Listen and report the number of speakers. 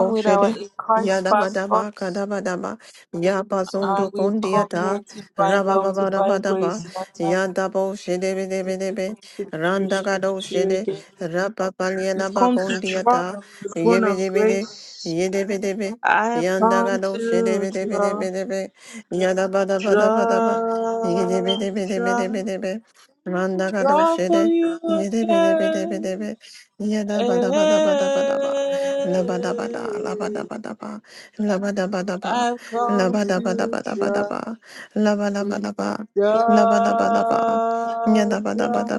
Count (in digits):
2